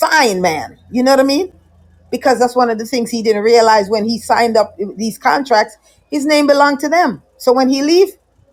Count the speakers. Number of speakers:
1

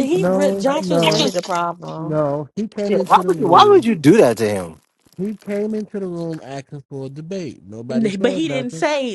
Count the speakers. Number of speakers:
3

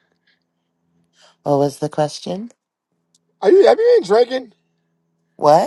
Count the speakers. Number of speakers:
2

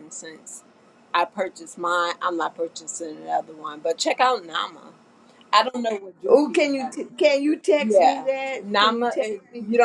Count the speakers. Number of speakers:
2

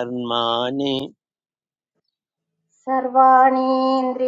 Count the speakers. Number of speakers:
2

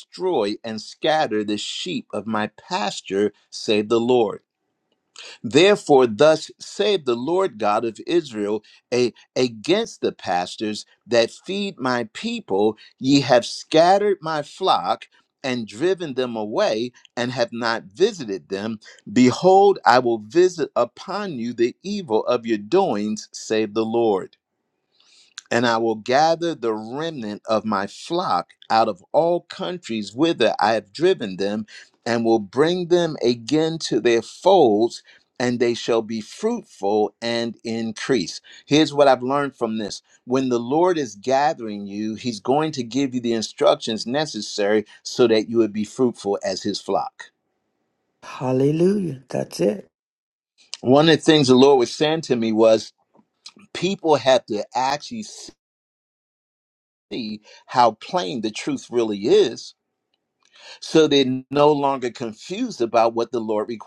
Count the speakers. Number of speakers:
2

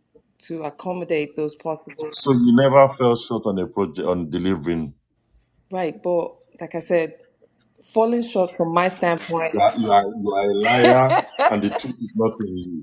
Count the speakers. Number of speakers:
2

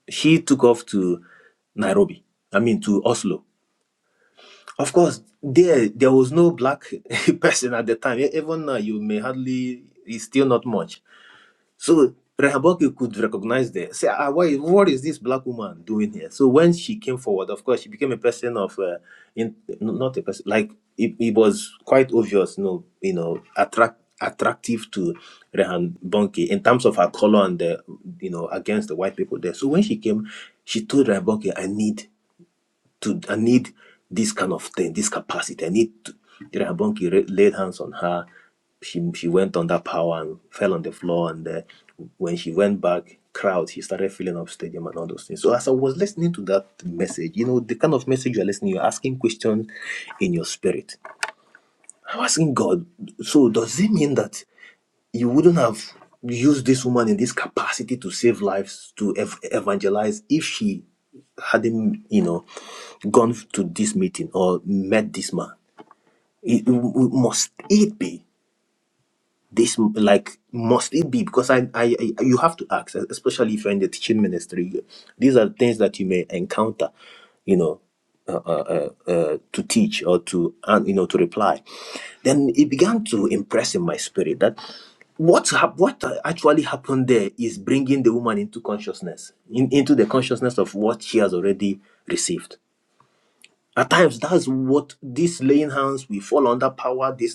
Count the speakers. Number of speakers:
1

